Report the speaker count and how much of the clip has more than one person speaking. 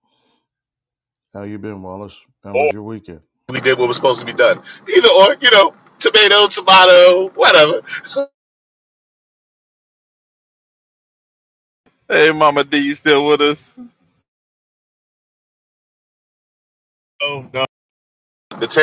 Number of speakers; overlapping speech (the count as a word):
three, no overlap